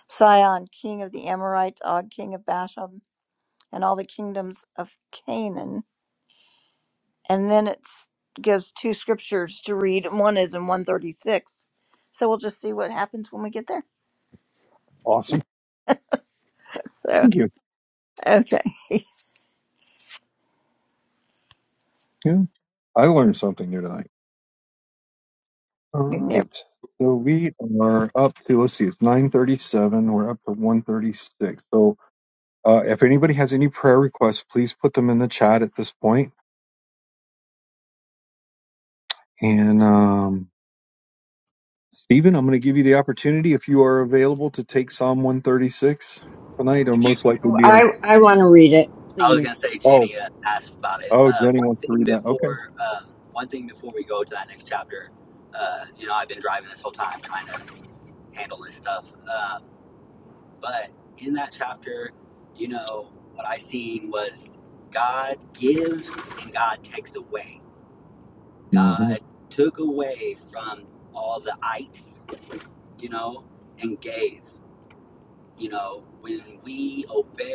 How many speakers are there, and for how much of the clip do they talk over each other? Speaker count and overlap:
four, about 5%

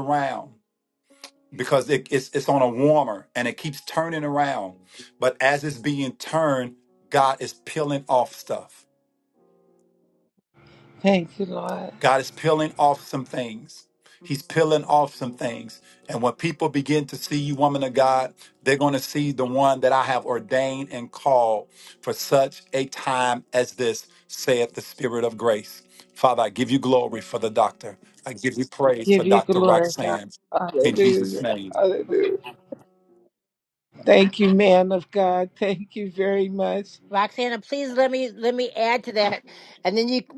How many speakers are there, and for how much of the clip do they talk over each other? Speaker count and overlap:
three, about 6%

